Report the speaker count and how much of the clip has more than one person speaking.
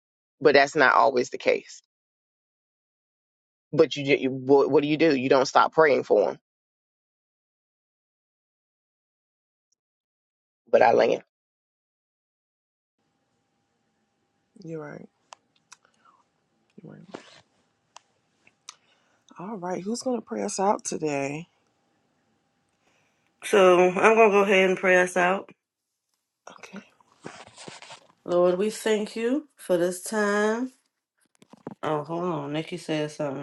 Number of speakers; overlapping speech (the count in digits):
3, no overlap